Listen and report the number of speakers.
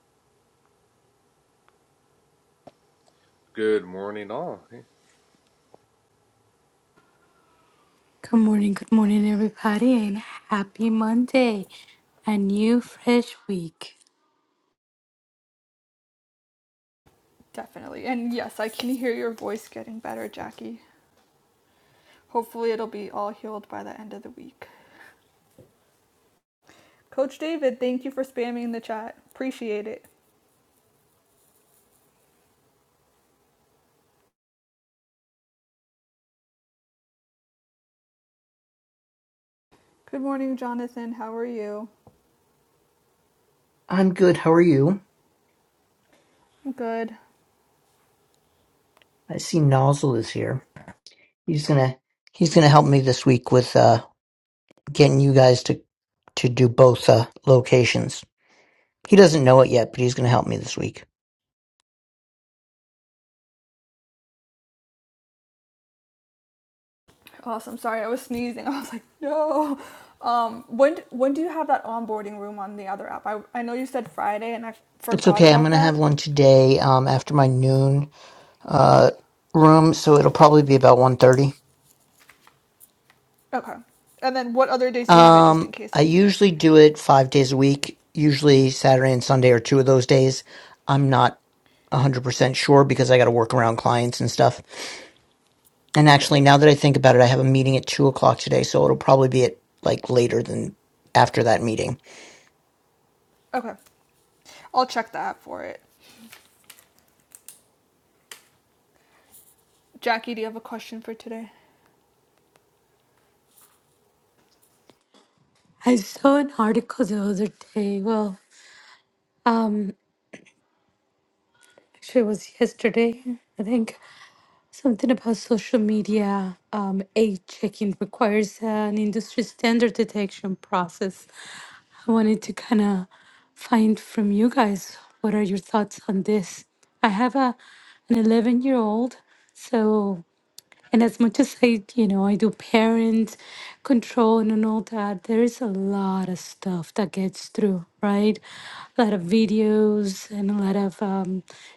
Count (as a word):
four